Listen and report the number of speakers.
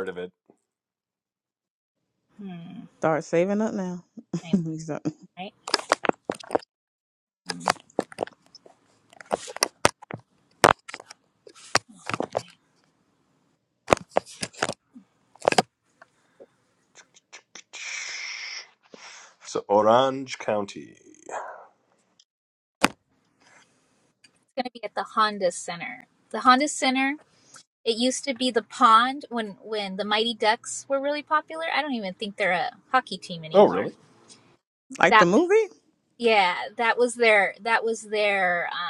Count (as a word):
three